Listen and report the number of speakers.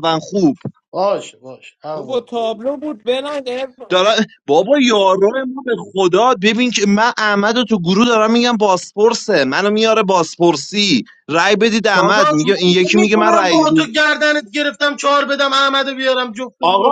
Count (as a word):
three